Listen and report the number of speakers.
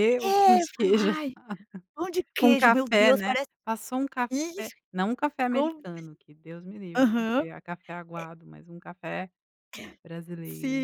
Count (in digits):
2